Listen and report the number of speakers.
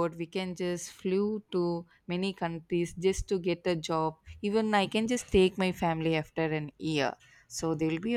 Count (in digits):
1